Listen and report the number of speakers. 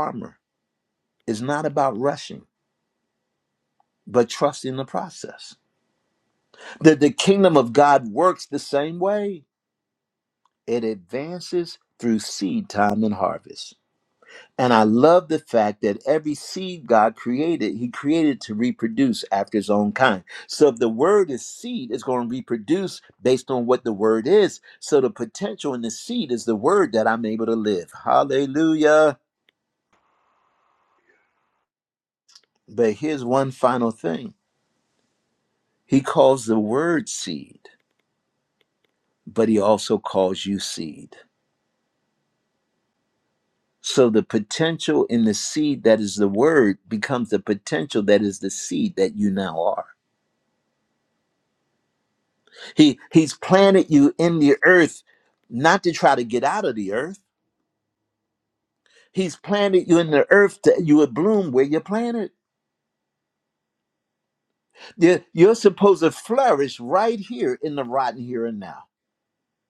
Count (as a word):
one